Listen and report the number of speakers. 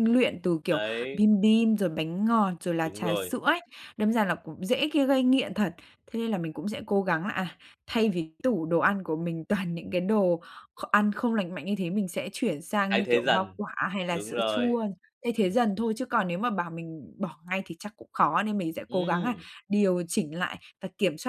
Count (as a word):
two